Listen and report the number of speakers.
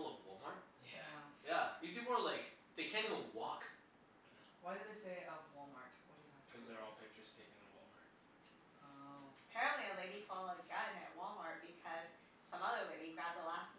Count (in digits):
4